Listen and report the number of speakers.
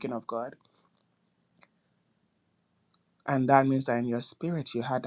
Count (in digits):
1